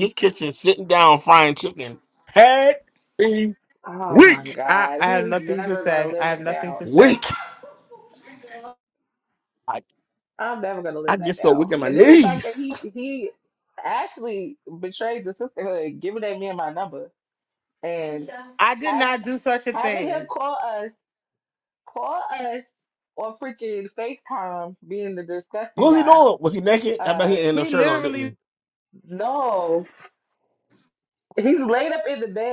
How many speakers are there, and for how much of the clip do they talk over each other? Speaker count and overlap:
three, about 21%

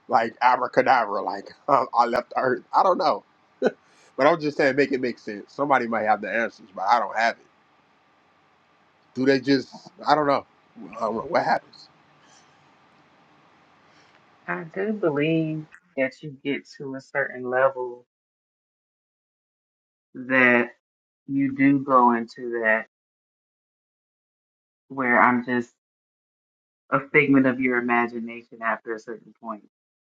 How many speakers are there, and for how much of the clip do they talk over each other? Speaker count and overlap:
two, no overlap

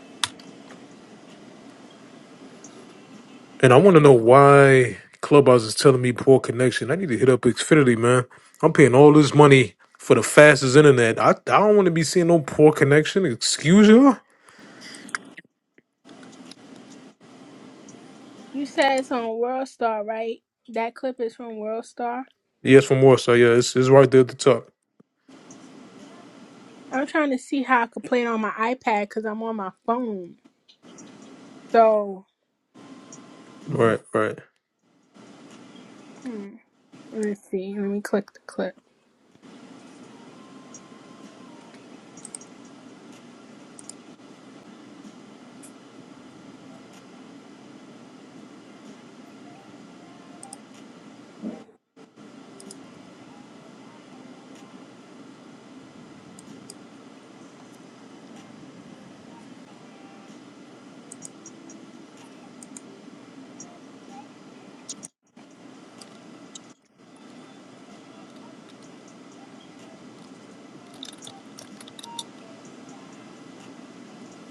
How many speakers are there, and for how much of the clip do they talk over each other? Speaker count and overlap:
two, no overlap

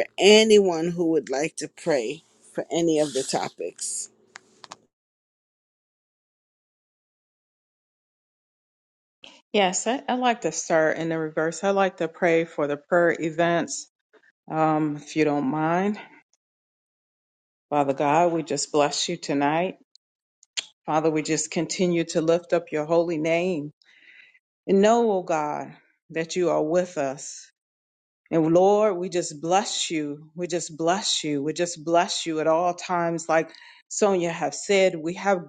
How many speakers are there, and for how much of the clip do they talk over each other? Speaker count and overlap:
two, no overlap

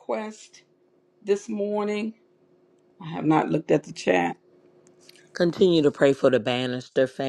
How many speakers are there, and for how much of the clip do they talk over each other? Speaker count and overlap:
two, no overlap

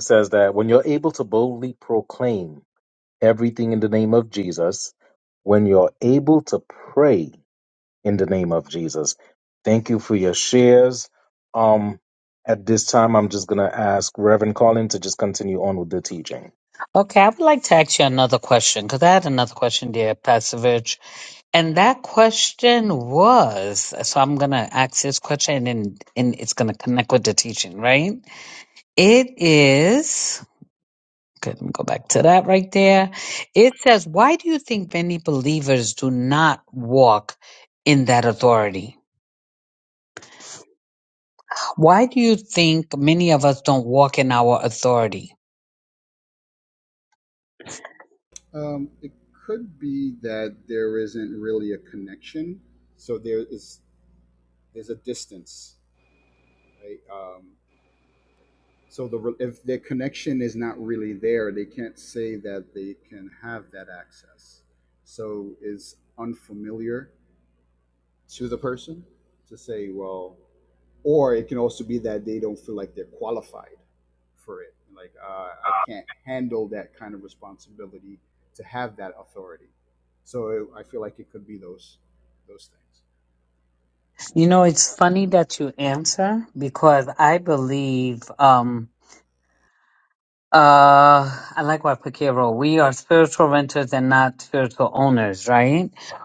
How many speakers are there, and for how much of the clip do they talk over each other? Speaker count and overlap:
three, no overlap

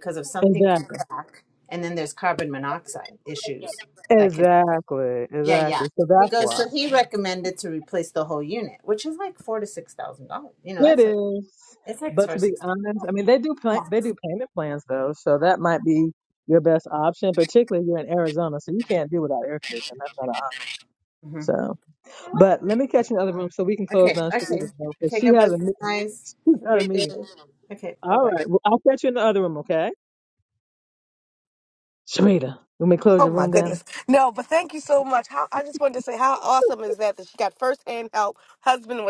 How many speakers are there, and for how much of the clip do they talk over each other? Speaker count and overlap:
three, about 15%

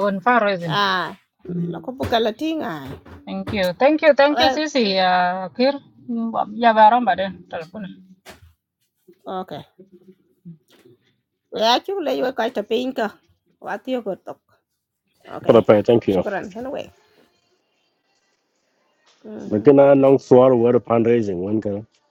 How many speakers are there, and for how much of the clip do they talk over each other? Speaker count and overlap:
three, about 5%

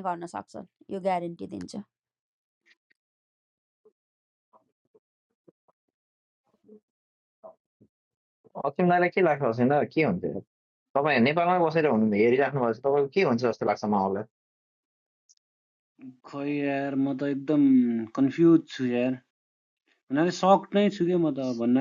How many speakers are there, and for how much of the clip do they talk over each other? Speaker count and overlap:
three, no overlap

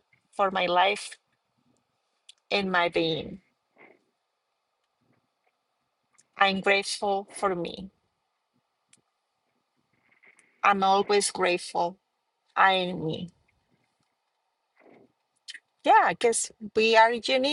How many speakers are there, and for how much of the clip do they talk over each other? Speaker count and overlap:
one, no overlap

